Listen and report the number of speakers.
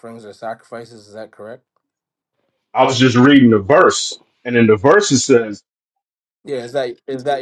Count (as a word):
two